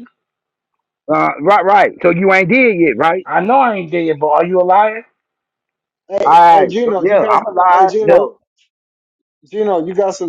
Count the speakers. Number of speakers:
3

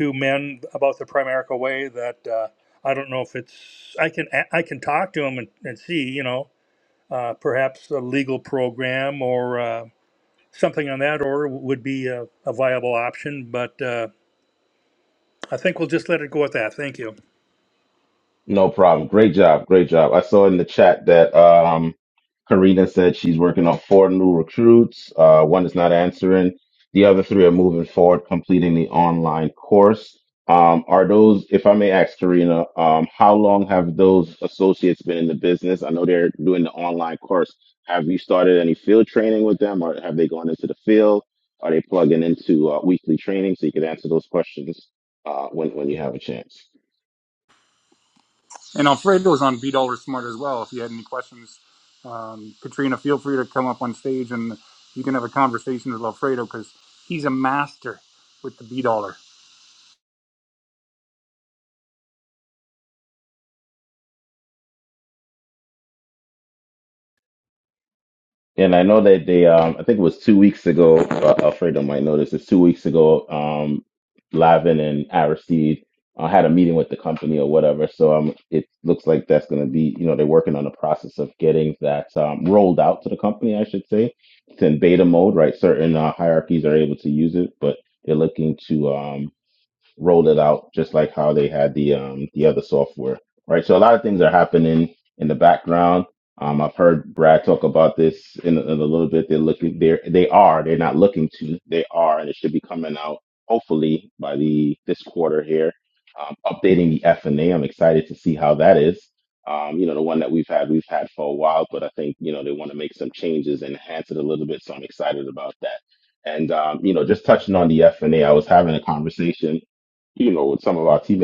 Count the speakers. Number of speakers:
3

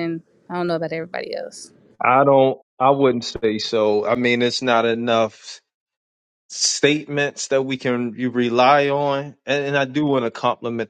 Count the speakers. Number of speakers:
2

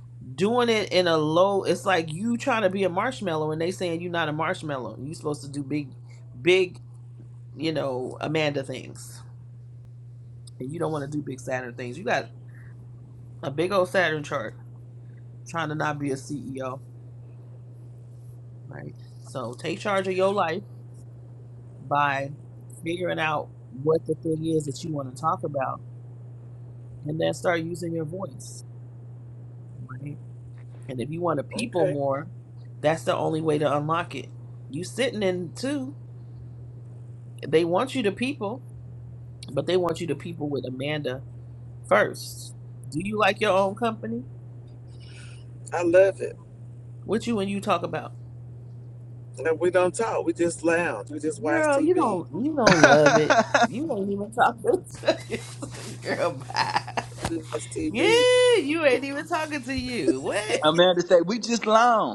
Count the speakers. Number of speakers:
3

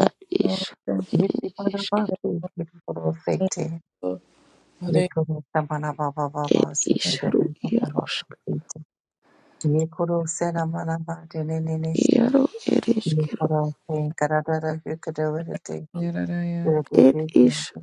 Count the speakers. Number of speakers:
3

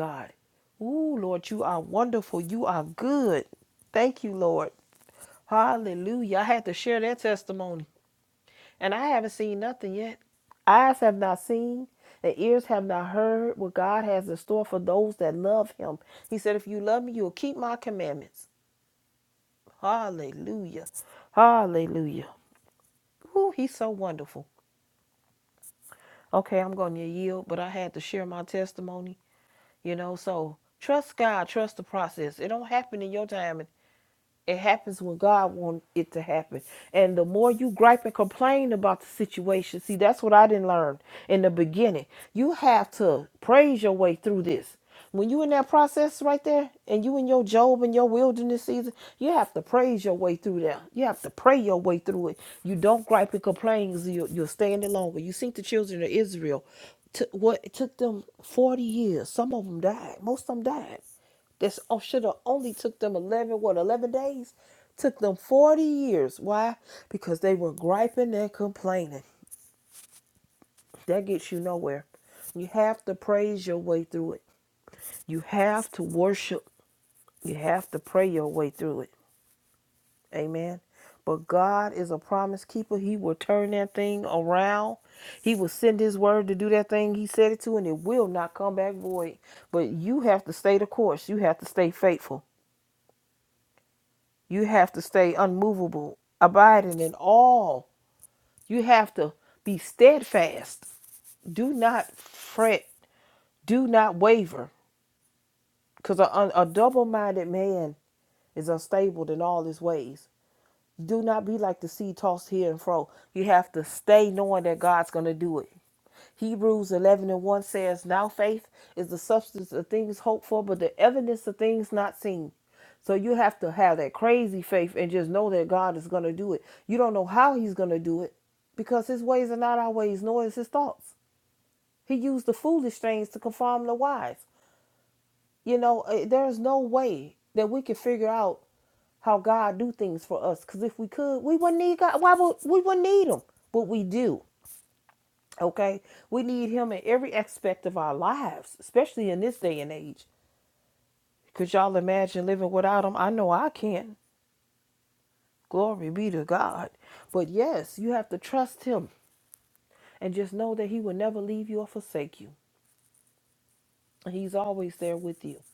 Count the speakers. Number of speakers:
1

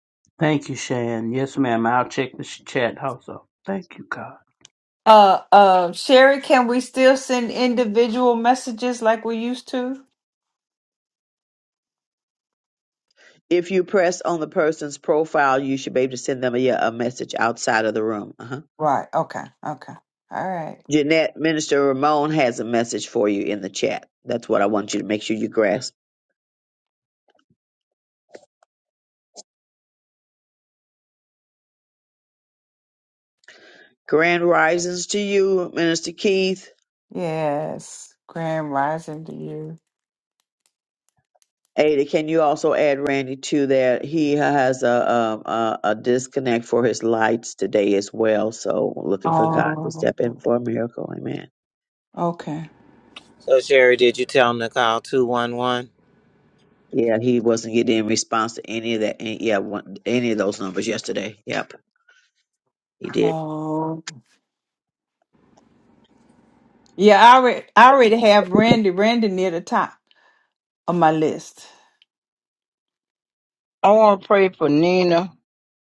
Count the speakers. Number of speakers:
5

